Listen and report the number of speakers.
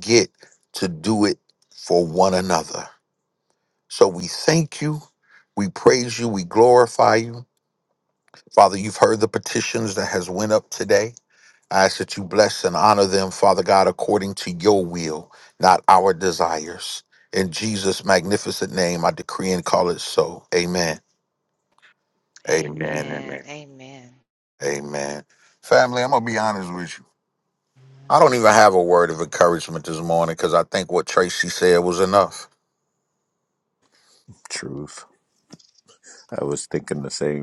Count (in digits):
3